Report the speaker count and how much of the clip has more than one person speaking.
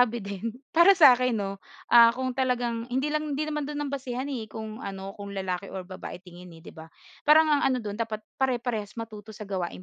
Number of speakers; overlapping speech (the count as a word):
one, no overlap